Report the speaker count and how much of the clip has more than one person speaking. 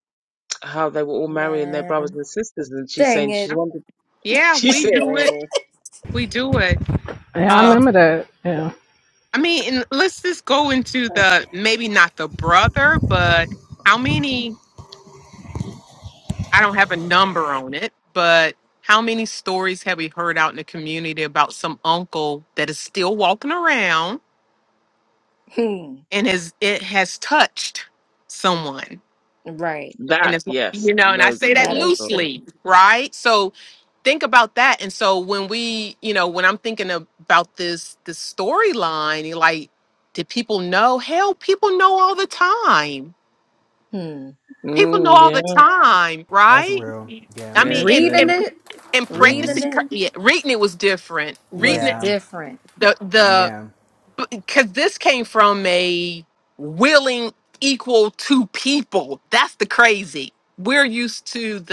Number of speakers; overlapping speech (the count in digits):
5, about 12%